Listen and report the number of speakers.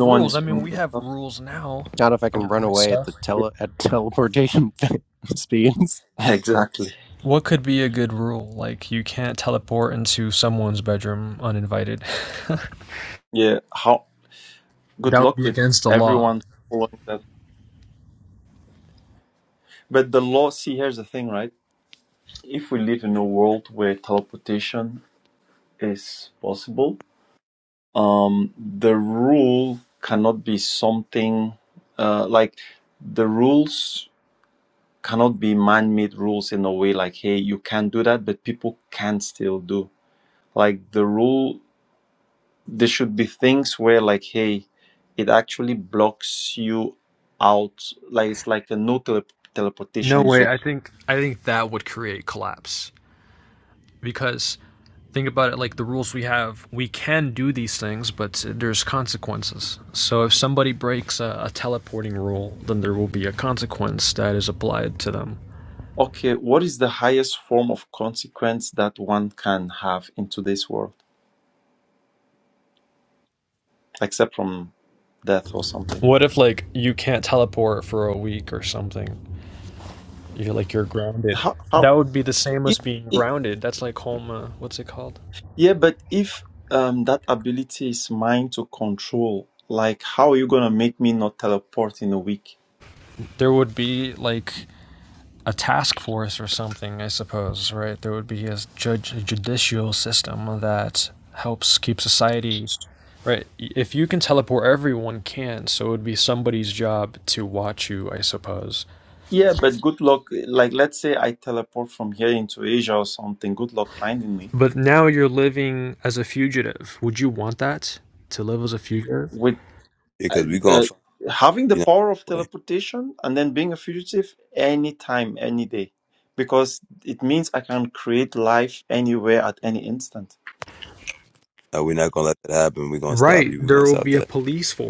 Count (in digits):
4